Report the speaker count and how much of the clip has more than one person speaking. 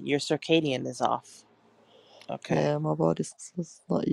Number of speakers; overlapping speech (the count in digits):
2, about 4%